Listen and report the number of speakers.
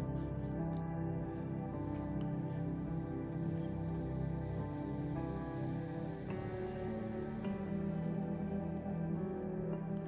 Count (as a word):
zero